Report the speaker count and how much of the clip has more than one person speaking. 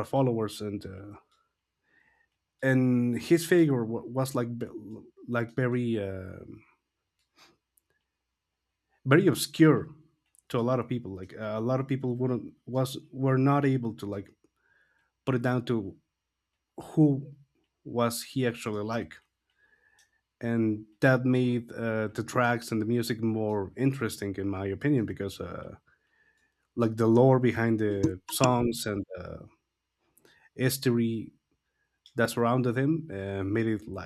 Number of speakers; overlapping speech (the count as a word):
one, no overlap